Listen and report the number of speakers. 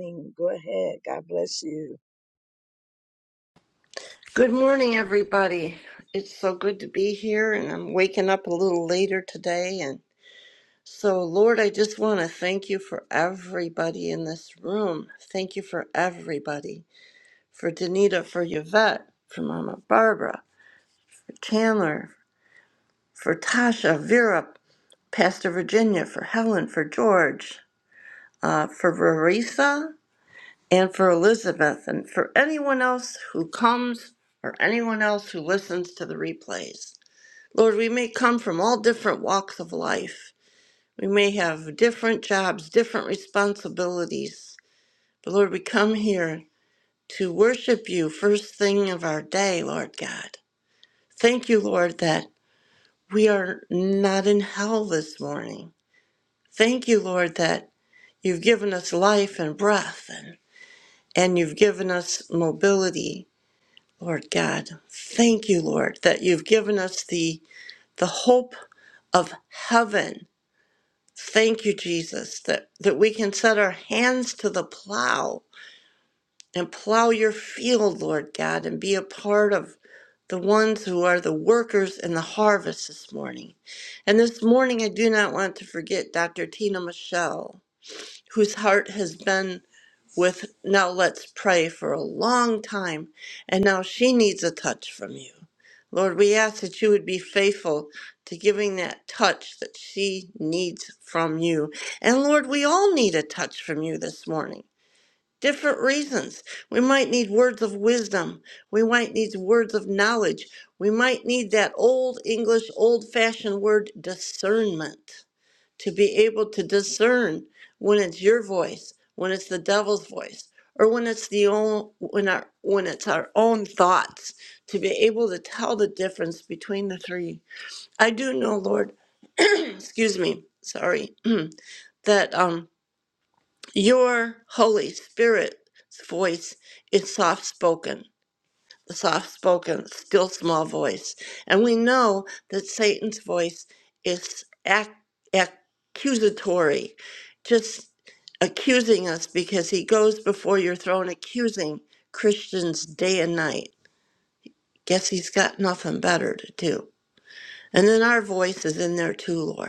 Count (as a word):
two